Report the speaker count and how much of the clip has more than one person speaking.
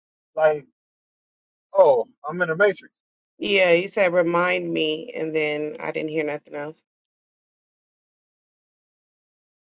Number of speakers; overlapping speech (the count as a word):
two, no overlap